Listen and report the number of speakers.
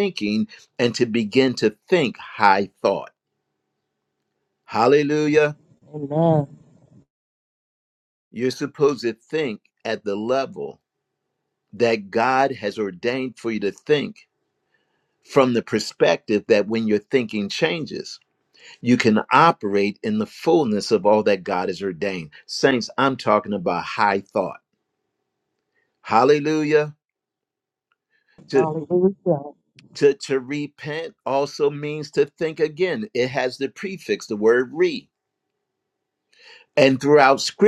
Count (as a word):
two